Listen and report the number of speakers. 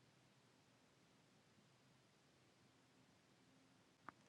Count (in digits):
0